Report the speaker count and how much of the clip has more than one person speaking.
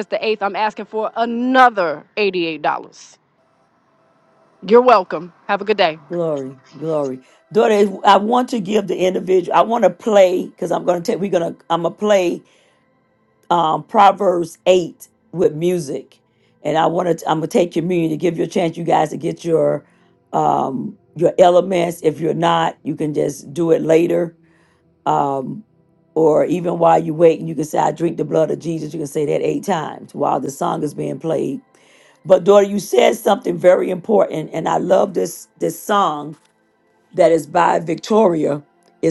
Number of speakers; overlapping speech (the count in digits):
2, no overlap